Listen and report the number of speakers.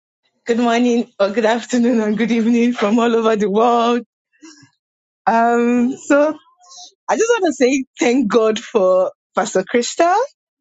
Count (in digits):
1